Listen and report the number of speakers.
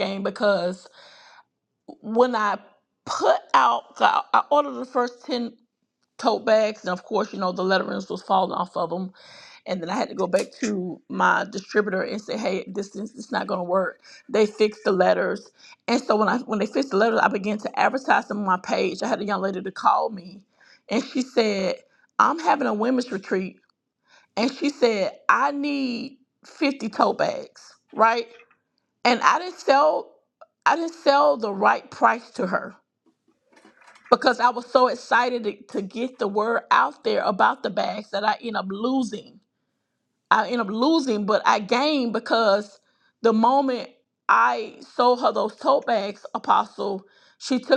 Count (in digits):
1